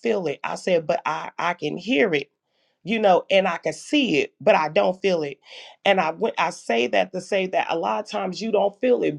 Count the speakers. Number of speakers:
1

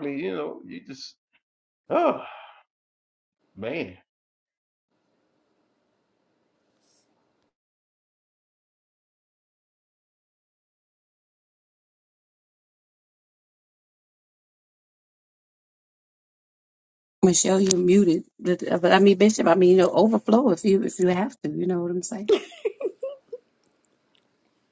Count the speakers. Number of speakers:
2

